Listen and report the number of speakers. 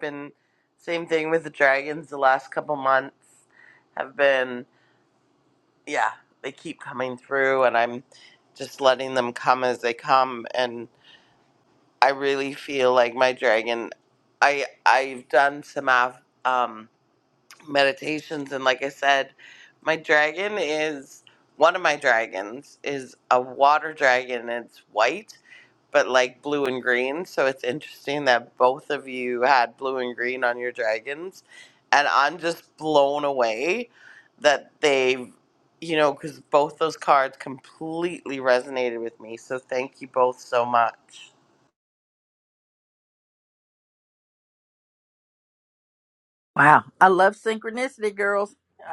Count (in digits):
2